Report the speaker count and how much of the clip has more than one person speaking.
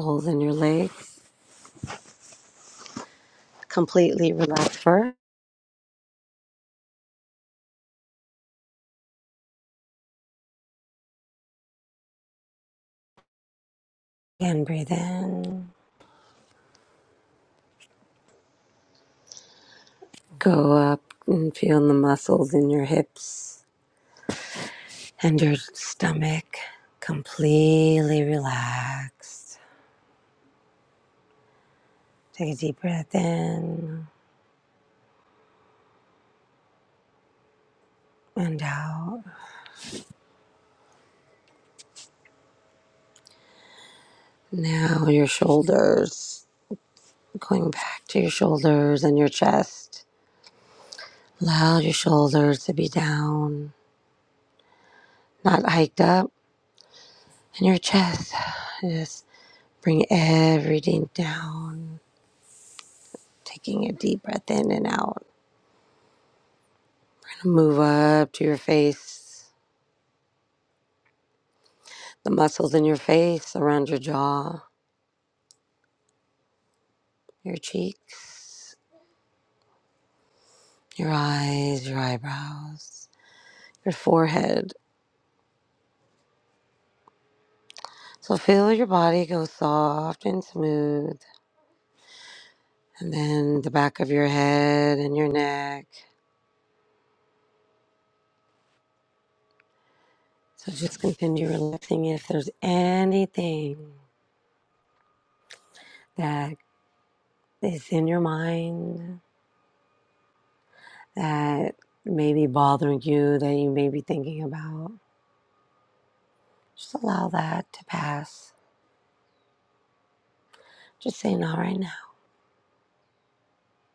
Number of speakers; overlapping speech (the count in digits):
1, no overlap